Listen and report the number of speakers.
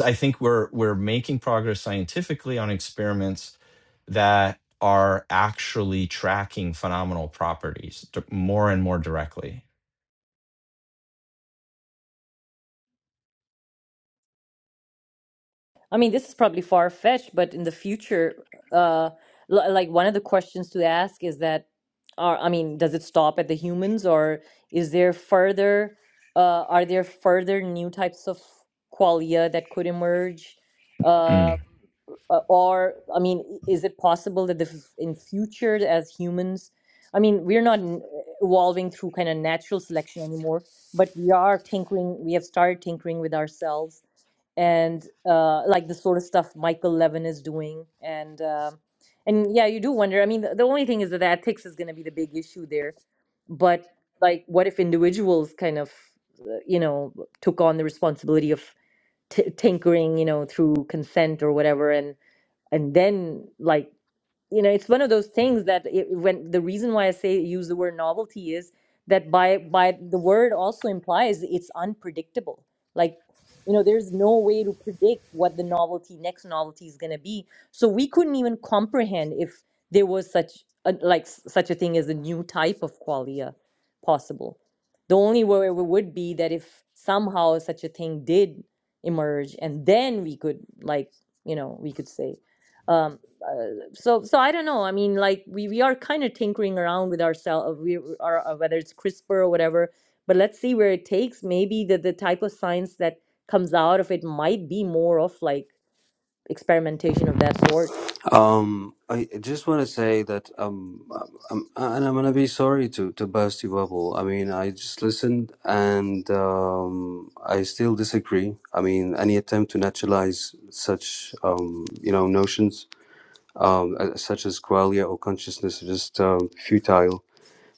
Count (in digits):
3